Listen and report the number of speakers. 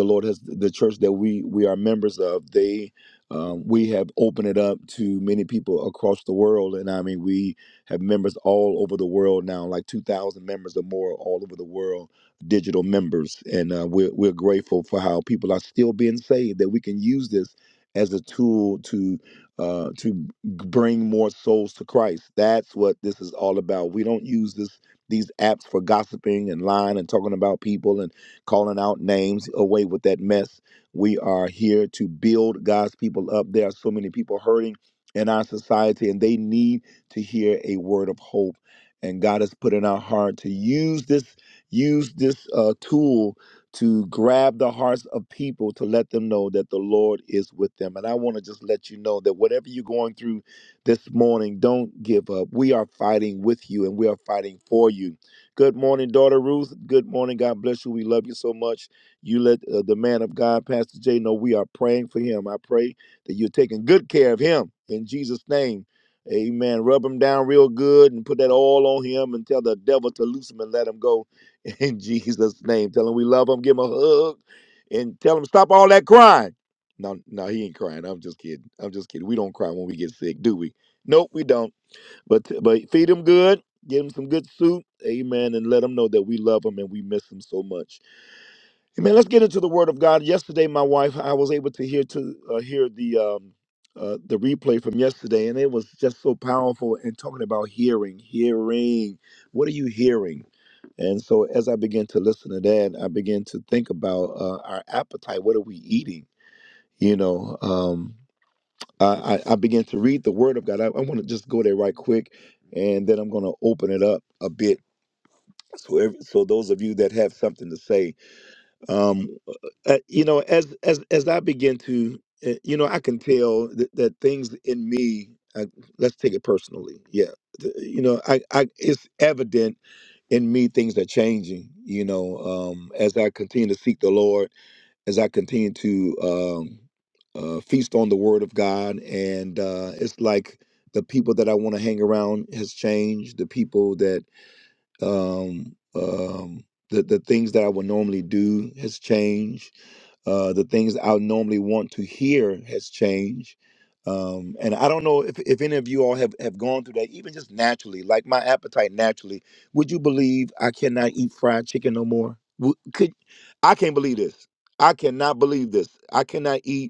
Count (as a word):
one